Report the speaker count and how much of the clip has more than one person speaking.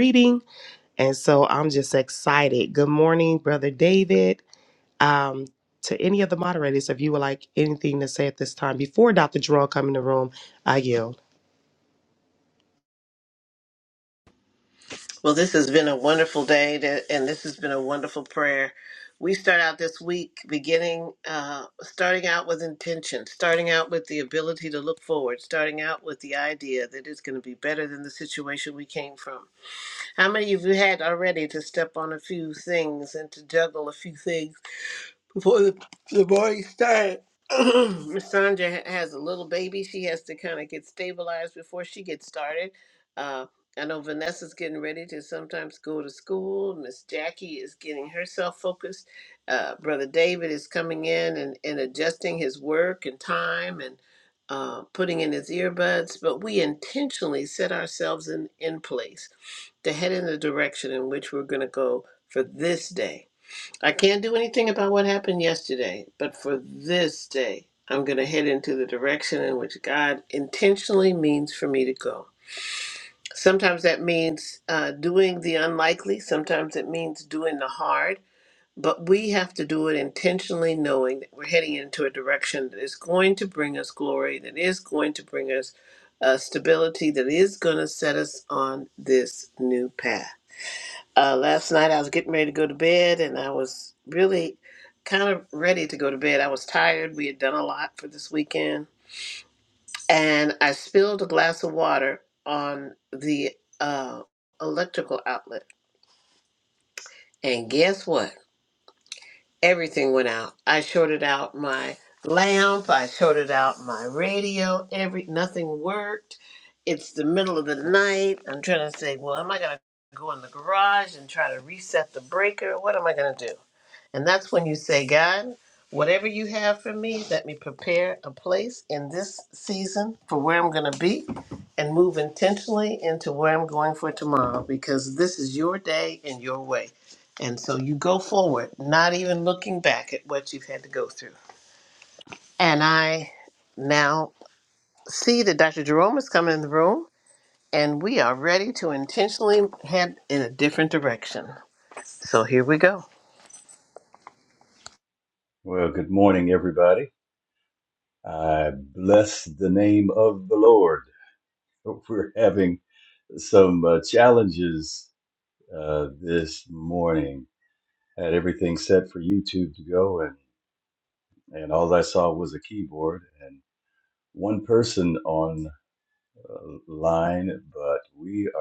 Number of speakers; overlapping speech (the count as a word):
three, no overlap